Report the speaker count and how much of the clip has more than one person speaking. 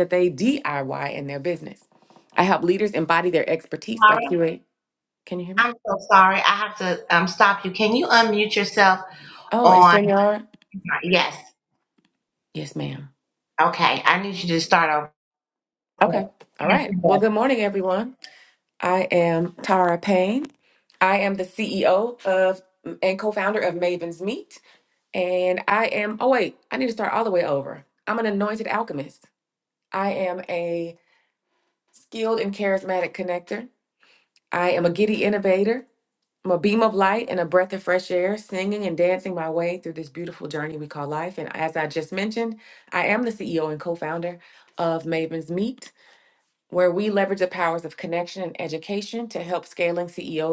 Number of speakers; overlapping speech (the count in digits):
2, about 2%